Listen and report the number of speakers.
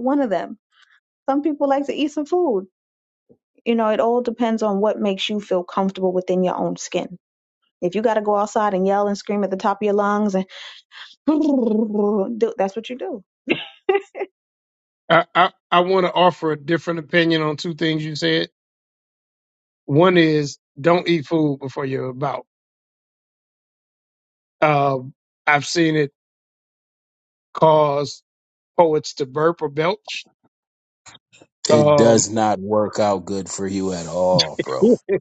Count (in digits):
3